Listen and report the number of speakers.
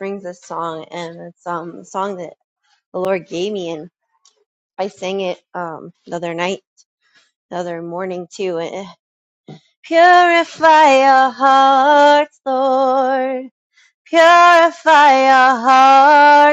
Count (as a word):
one